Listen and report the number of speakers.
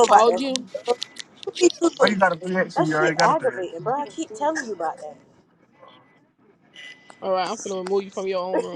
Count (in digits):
3